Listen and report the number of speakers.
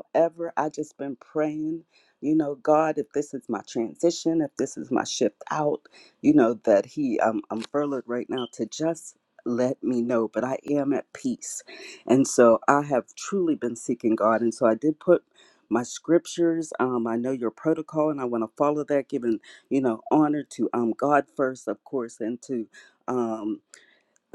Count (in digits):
1